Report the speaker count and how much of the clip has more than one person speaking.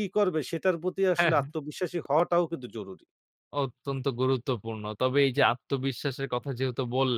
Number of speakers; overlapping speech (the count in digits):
2, about 4%